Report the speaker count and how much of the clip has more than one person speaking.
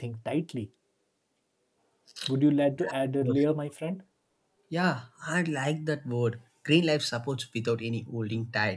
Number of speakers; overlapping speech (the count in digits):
2, about 3%